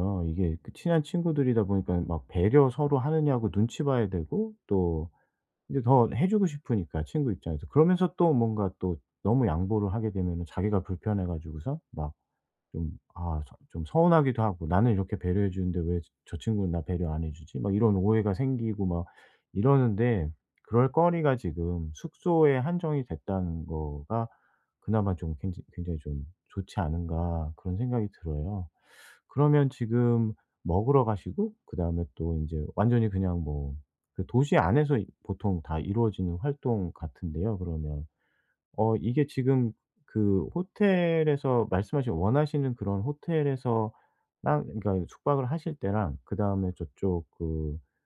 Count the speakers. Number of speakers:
one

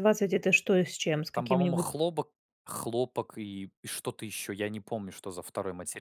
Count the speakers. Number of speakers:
two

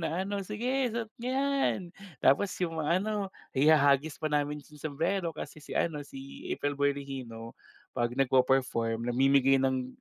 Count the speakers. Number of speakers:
one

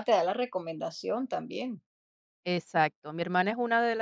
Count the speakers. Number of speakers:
two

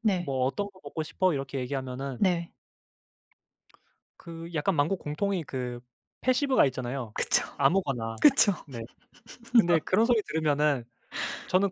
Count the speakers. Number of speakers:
two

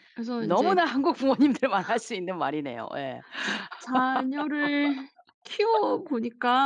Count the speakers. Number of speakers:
two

